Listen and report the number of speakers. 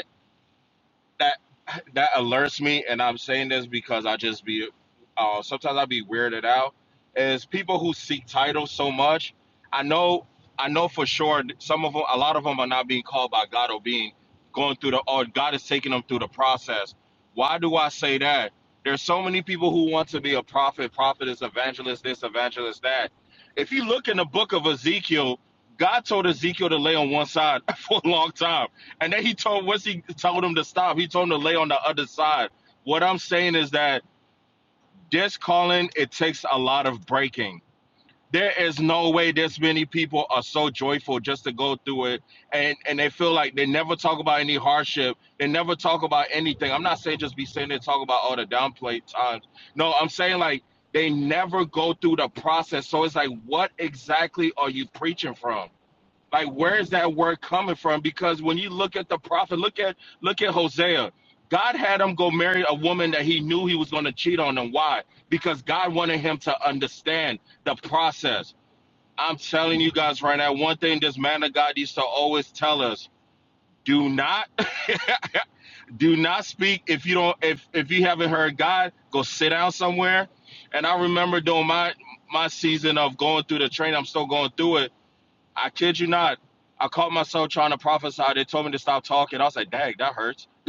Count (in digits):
1